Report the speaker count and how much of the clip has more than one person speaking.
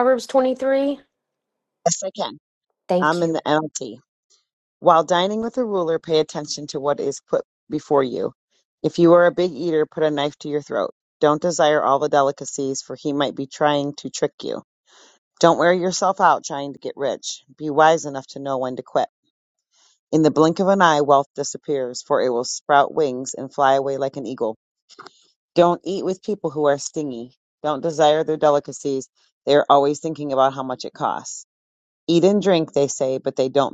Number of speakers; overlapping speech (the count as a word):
two, about 1%